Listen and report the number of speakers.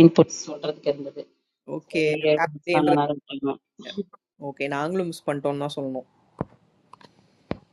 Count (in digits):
2